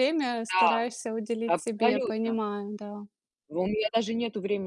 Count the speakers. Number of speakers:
two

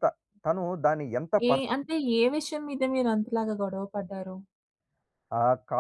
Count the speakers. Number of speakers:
two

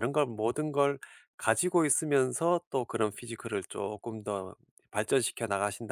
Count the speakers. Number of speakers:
one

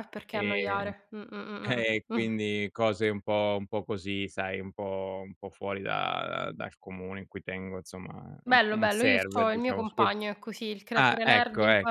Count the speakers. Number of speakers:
two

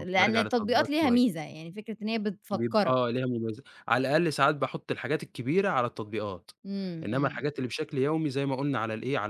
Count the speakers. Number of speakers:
two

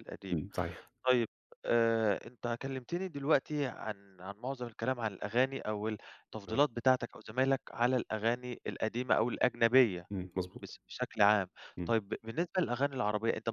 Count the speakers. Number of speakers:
two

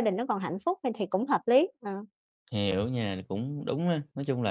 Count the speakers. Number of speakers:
two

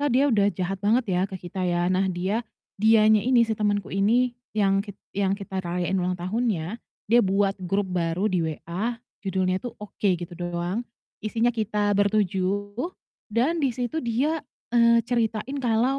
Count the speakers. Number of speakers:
one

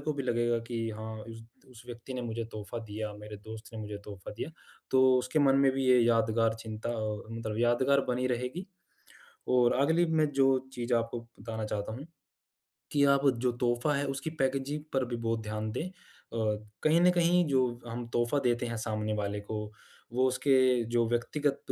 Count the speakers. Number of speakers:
one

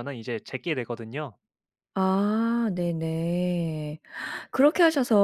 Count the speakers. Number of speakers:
two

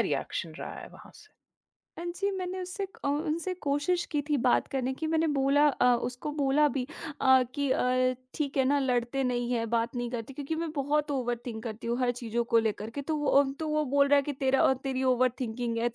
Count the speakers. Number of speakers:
two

